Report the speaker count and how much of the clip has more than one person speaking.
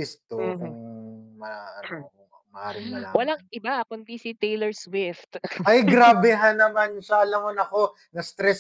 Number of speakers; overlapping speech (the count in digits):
2, about 7%